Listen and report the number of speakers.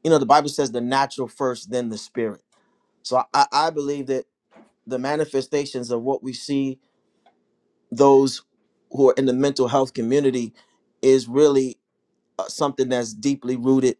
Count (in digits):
1